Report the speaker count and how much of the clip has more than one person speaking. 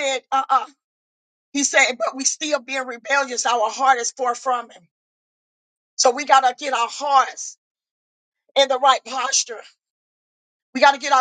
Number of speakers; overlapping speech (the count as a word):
one, no overlap